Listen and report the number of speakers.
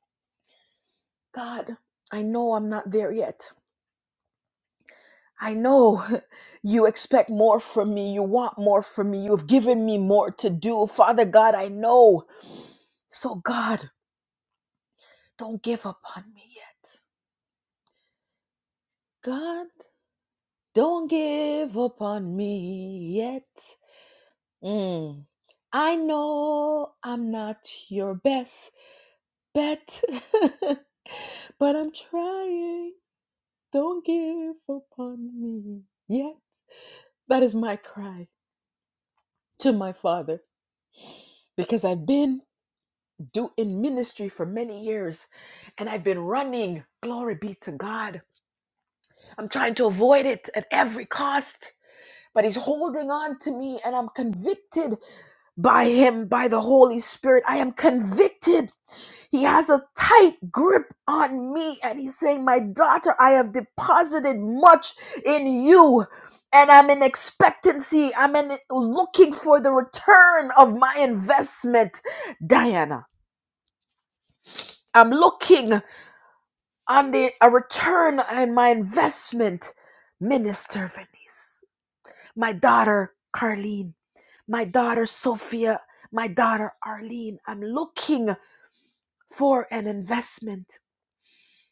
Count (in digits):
1